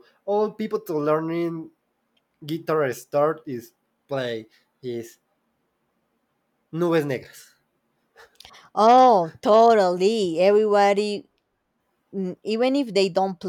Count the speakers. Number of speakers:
two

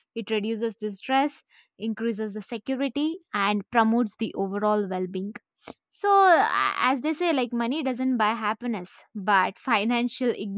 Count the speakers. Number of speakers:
one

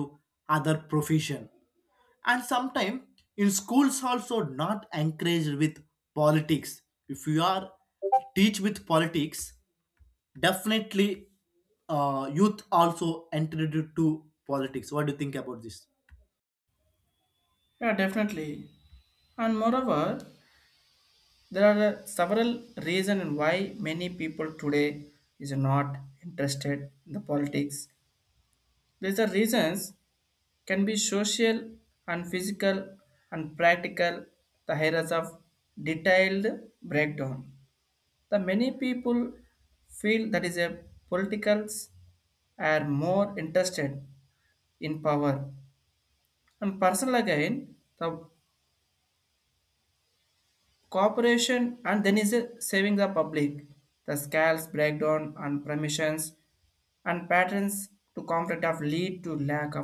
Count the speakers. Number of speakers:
two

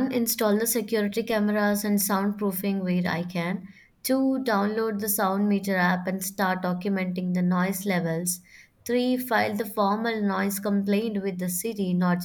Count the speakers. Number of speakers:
one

